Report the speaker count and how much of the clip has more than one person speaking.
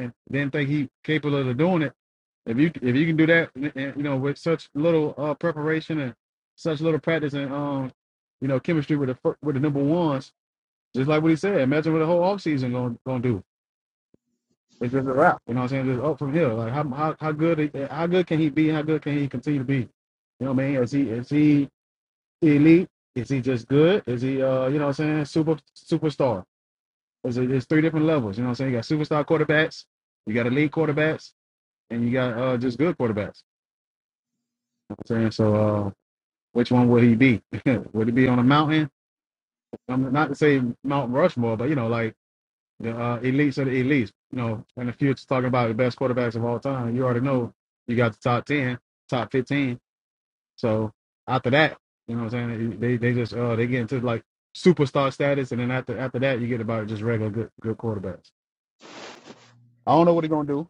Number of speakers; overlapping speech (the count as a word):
one, no overlap